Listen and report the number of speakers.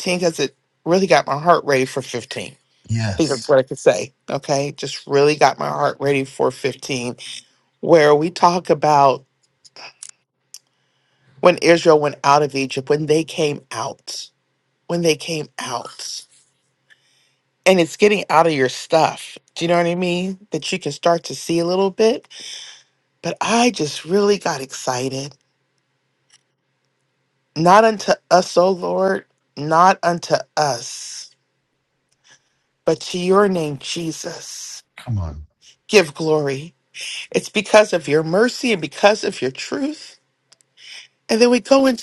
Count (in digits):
2